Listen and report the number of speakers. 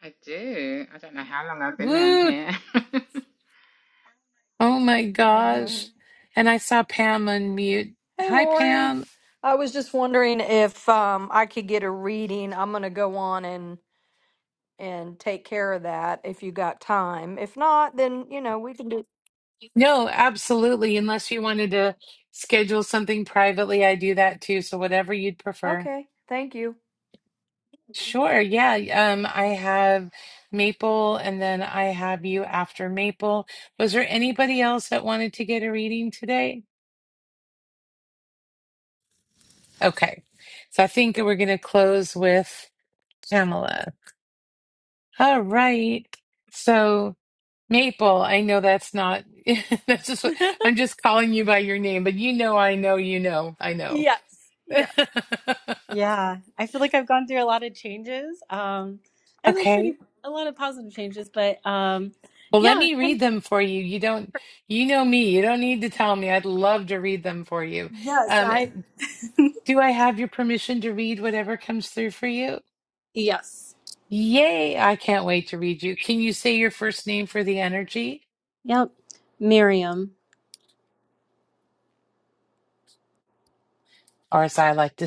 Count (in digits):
4